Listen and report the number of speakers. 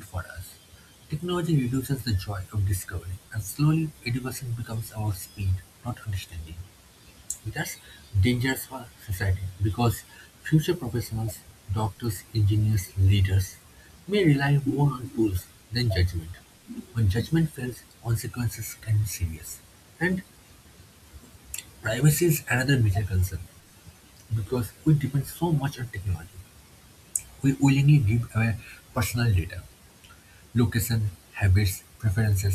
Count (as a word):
one